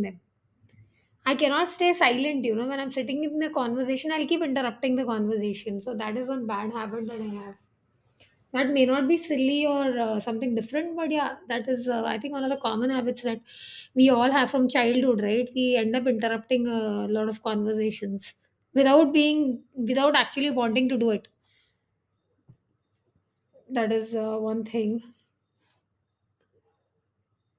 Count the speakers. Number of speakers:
one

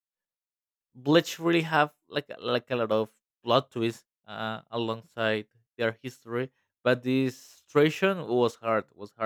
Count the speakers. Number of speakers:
one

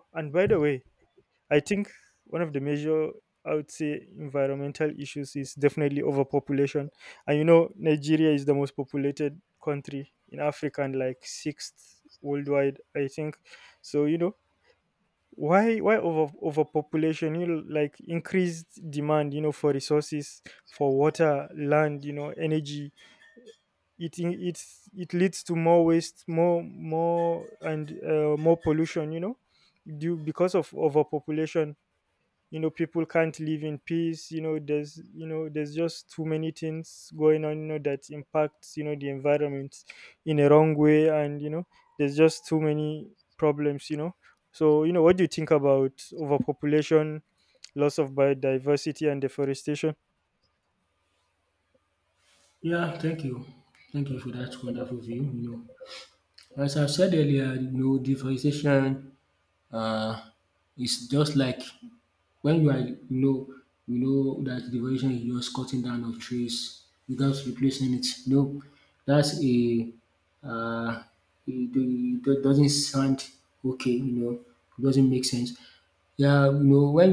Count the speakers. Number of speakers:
two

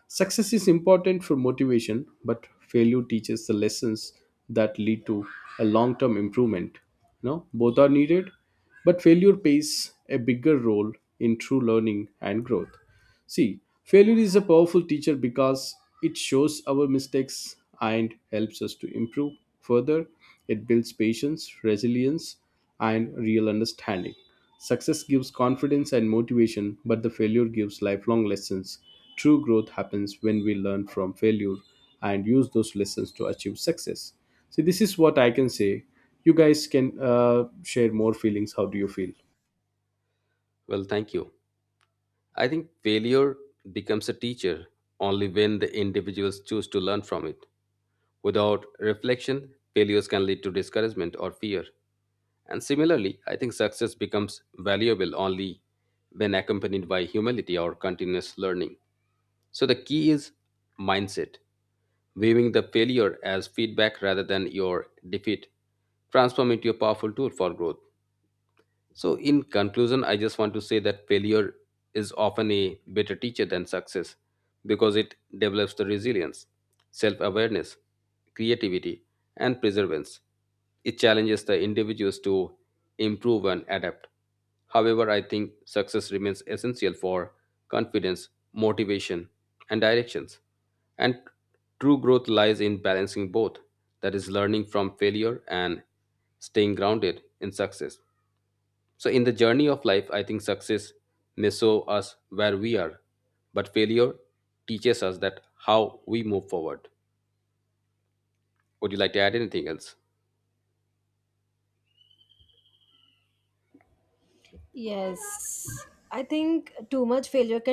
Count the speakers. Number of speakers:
three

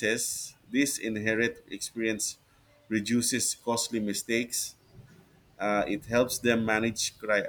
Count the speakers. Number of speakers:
one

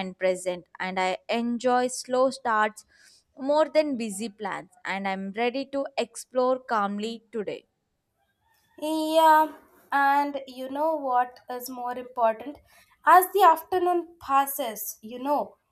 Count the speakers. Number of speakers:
two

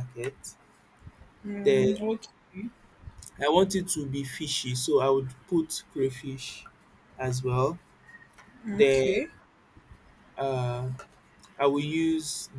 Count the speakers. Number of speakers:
two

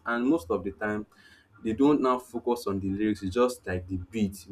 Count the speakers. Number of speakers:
one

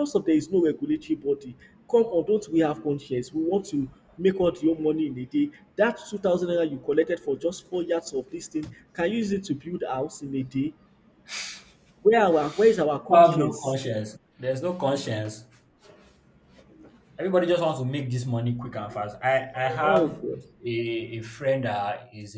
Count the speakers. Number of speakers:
two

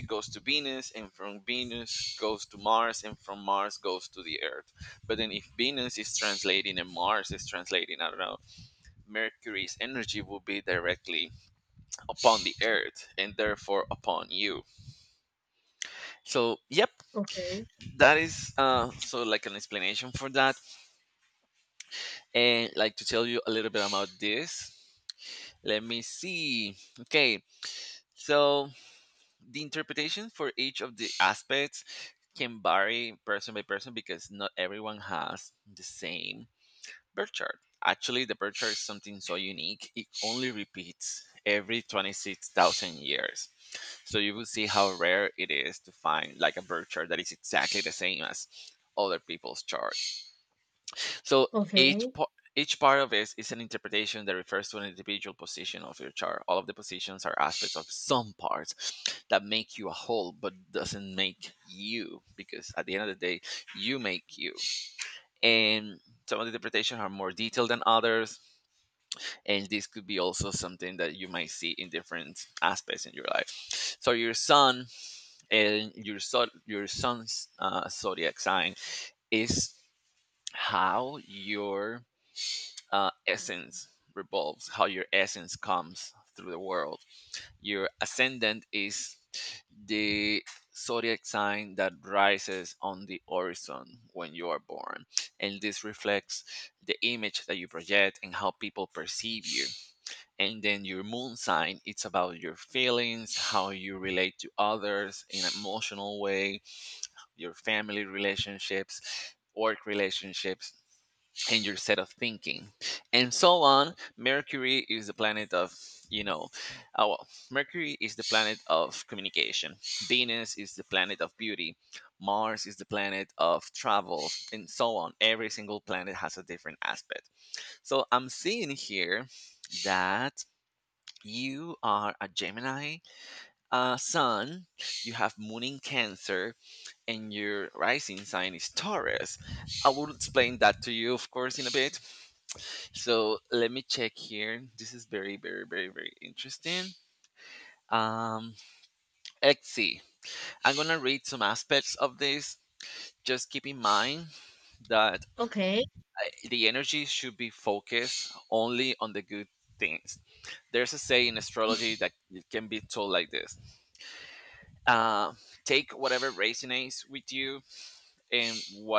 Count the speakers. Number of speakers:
two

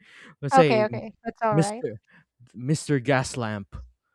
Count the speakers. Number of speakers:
two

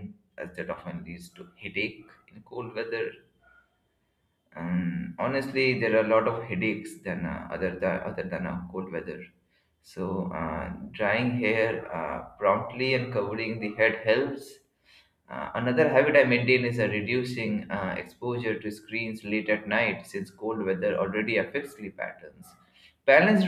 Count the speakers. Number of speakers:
one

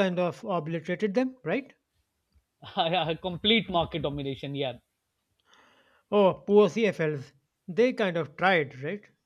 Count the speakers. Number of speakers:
two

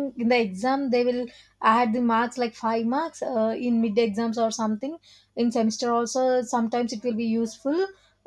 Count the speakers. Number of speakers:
one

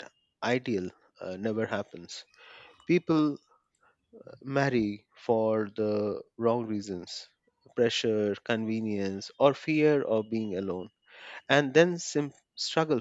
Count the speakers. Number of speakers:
one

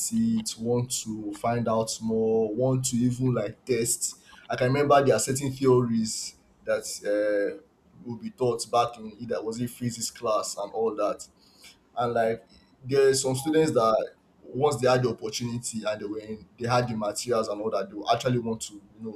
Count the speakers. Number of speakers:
one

